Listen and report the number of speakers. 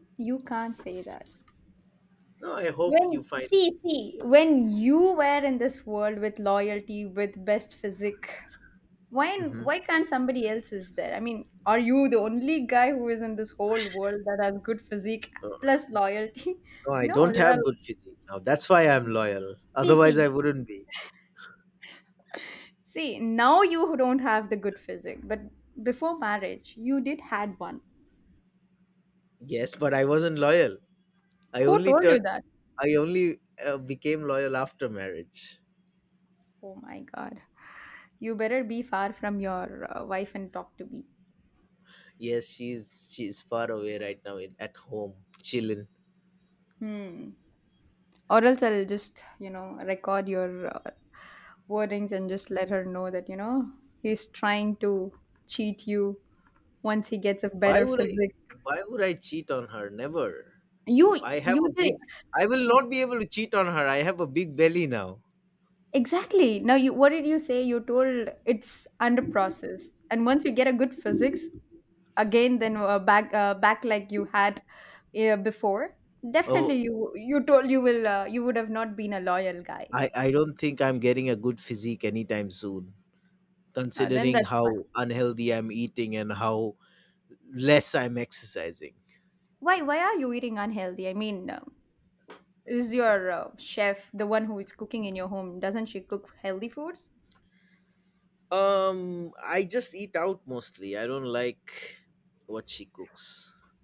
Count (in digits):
2